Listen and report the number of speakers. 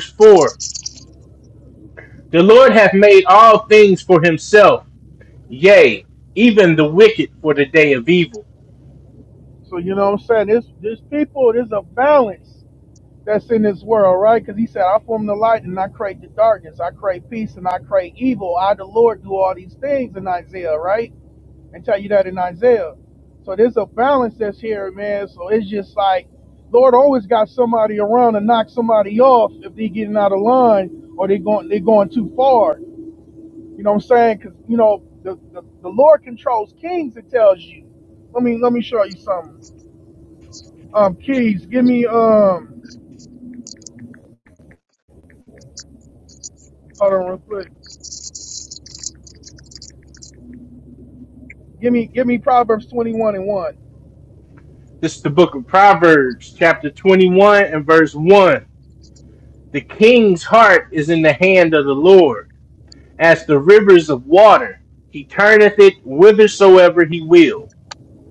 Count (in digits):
2